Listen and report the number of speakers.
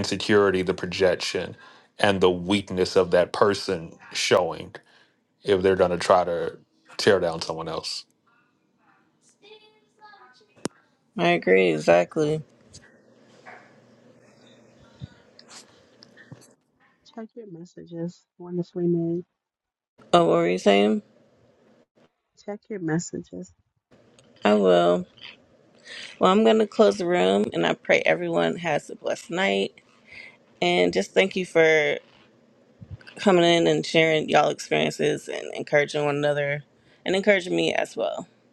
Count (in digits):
3